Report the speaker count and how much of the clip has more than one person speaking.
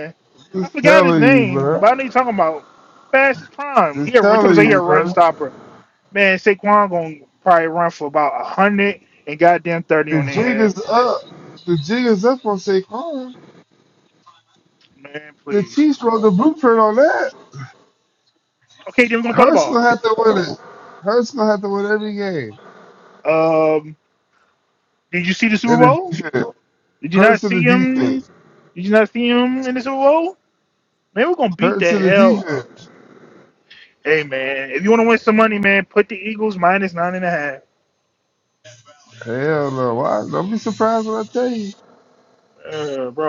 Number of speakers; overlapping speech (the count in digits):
2, about 15%